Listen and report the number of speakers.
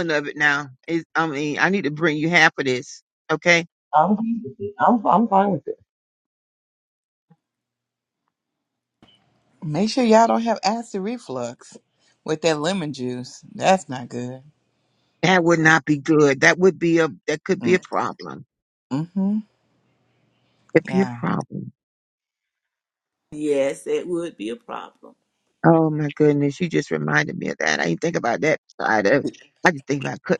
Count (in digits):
4